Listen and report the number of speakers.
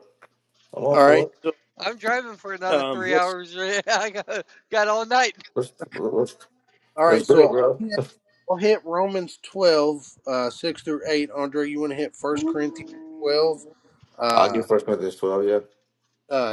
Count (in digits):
3